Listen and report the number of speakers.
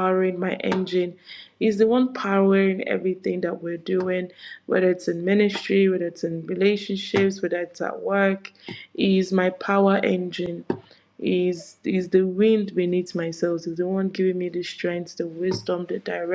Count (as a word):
one